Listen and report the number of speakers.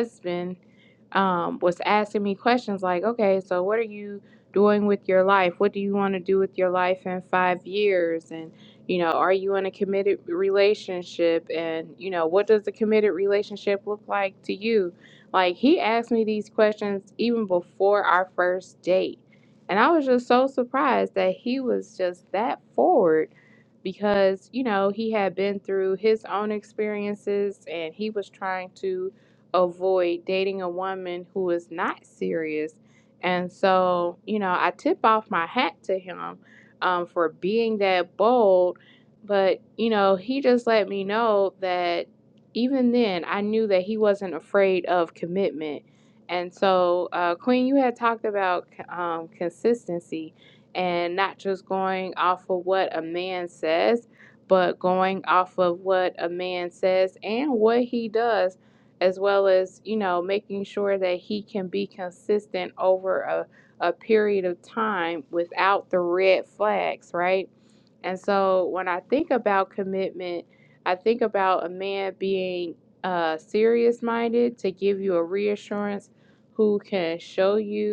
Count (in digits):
1